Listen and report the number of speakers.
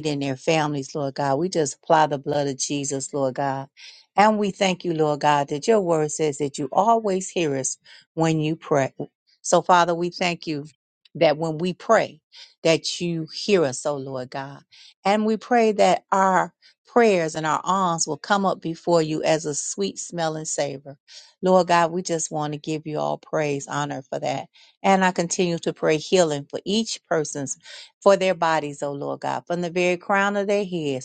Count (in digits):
1